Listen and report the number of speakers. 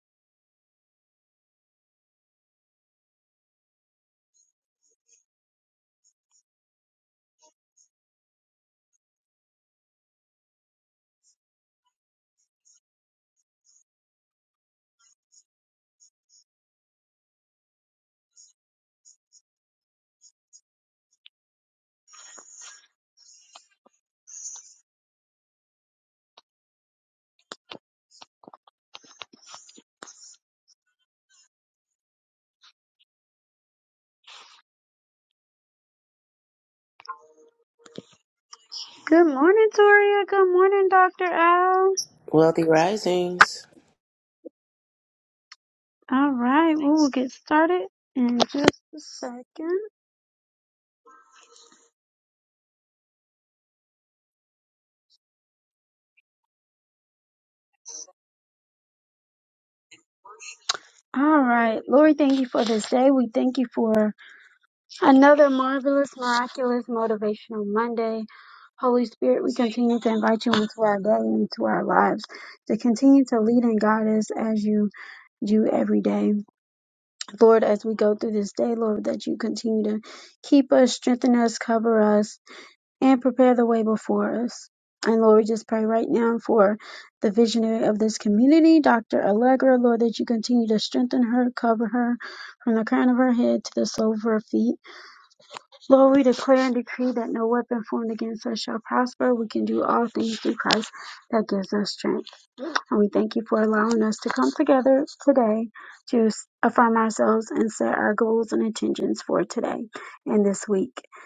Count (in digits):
2